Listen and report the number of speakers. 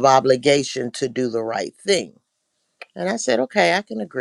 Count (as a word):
one